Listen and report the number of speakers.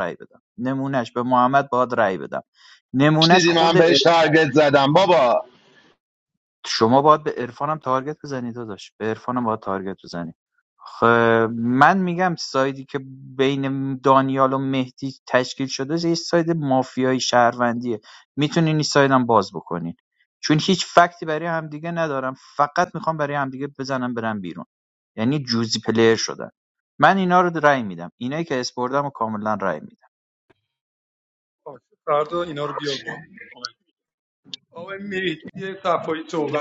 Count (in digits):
3